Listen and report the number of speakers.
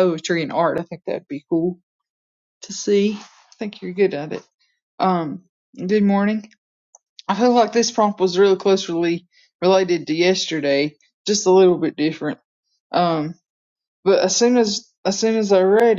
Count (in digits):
1